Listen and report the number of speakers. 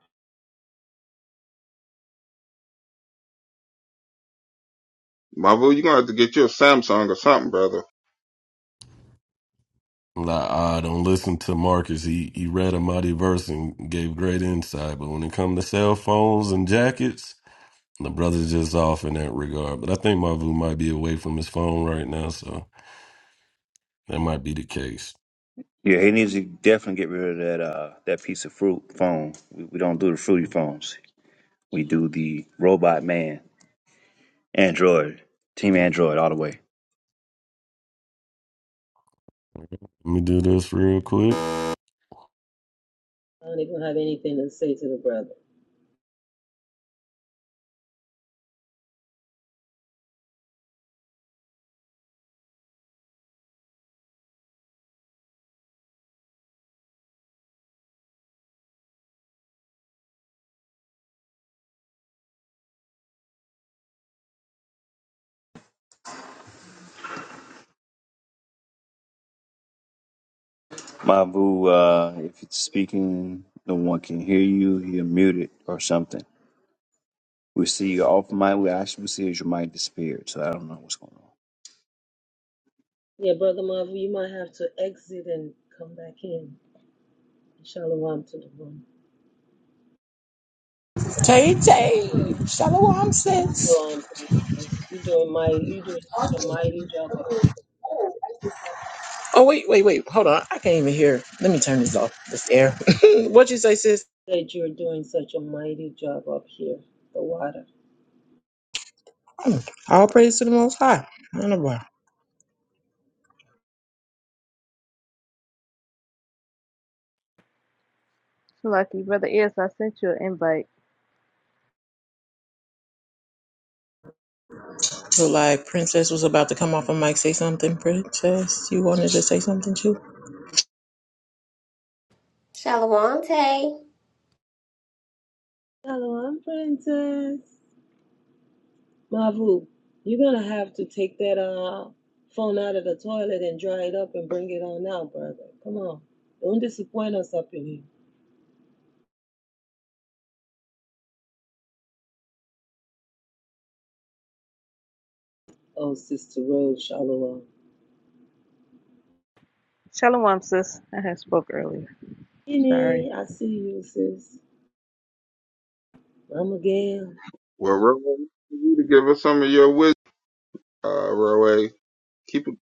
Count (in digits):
7